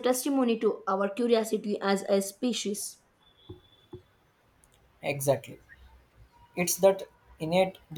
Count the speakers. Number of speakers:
2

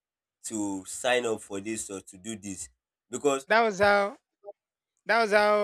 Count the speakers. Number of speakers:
2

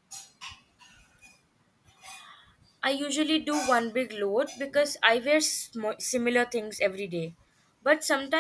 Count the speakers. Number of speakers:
1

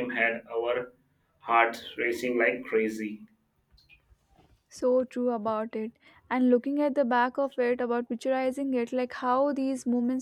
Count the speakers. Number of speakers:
2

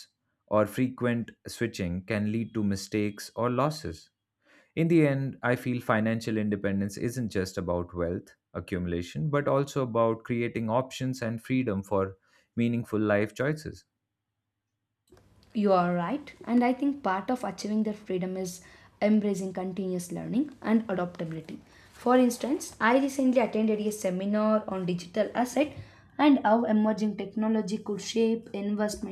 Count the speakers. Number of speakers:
2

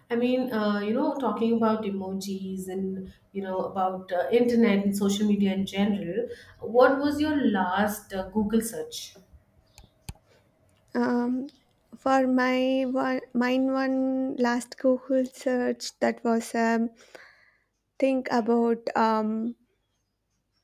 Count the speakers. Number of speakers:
2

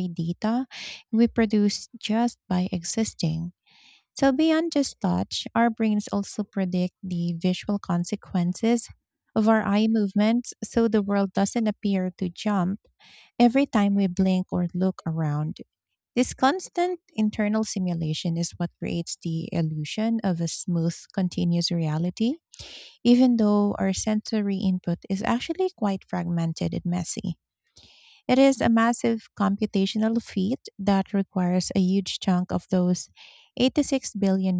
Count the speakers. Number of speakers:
1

